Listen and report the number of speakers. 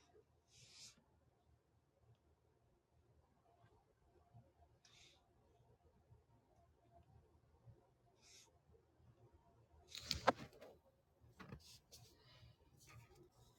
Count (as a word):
zero